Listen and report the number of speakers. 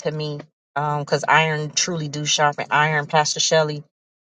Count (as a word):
one